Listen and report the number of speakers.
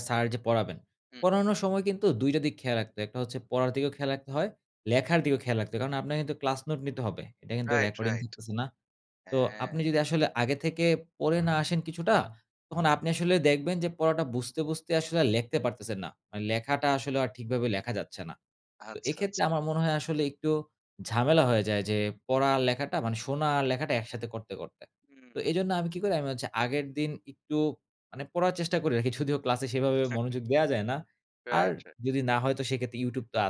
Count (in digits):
2